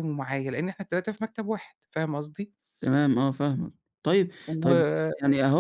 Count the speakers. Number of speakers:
2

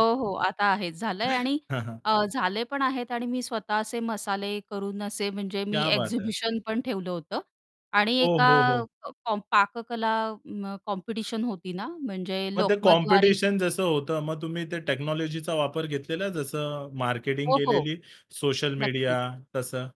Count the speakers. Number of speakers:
2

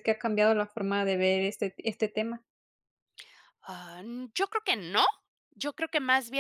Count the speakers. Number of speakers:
2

